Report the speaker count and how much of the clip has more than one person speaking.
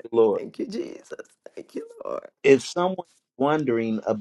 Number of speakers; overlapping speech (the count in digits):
2, about 2%